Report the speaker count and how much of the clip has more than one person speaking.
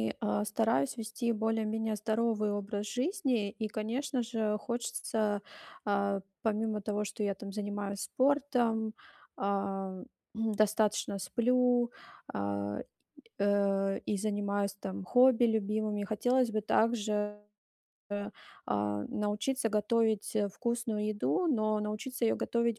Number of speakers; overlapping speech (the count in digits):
1, no overlap